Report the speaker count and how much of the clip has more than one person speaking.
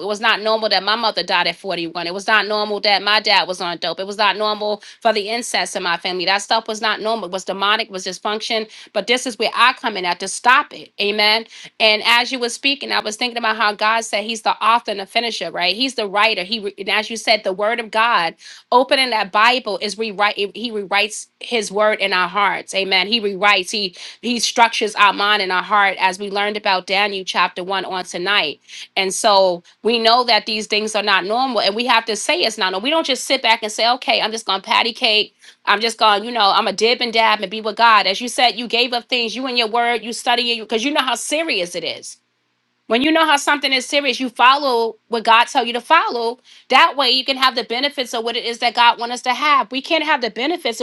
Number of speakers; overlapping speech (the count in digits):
1, no overlap